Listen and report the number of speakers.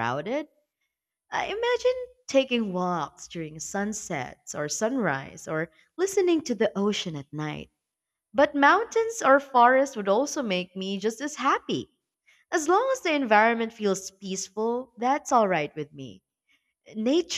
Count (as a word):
one